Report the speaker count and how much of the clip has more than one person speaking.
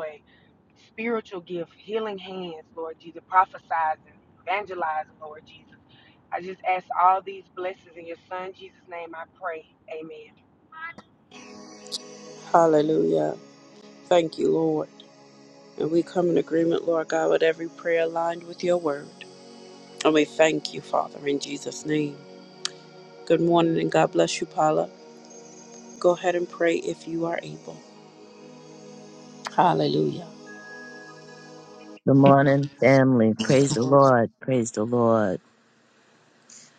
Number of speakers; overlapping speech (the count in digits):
3, no overlap